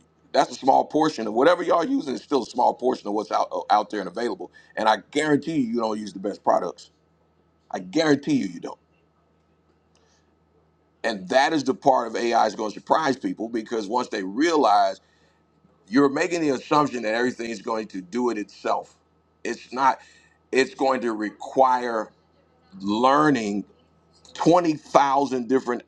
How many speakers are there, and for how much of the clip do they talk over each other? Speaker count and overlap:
1, no overlap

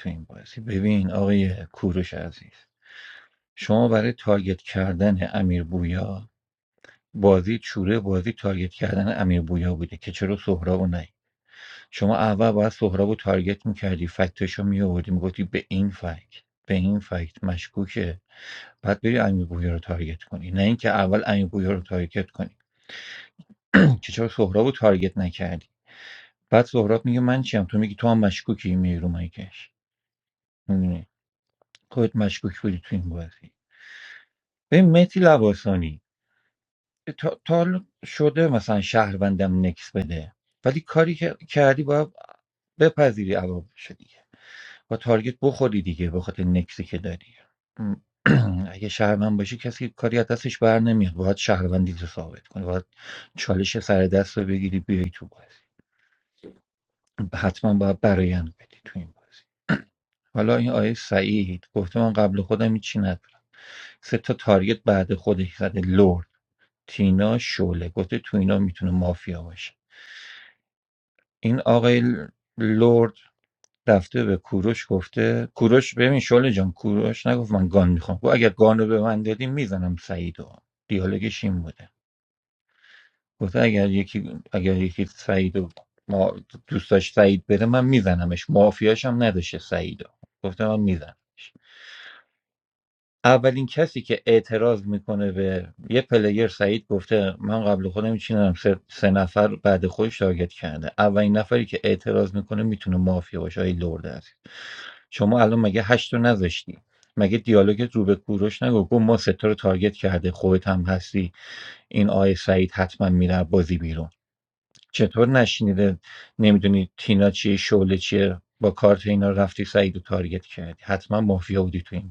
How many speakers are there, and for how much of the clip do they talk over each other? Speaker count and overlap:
1, no overlap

